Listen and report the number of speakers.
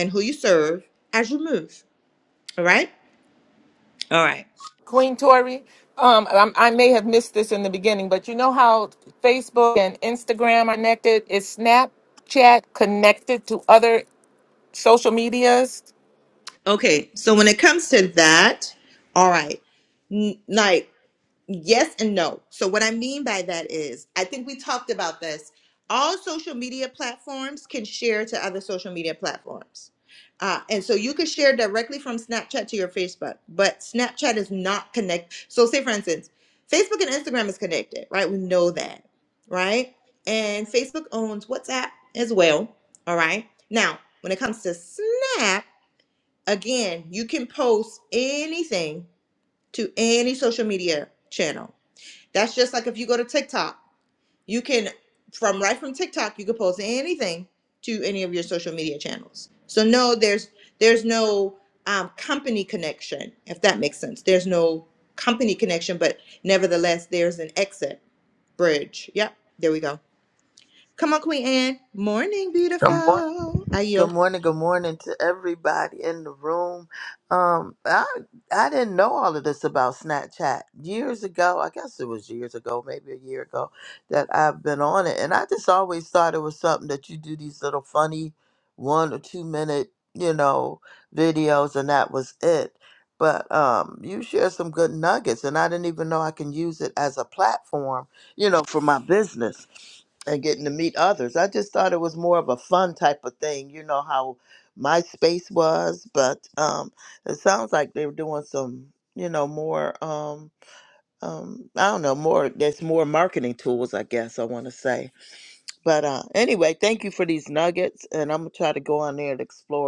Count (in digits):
3